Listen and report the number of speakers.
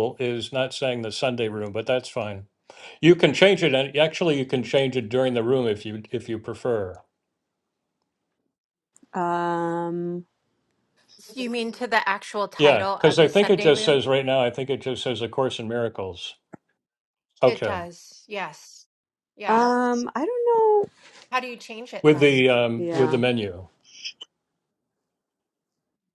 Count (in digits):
3